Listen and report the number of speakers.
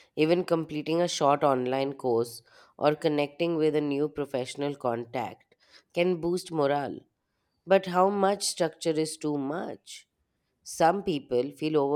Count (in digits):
1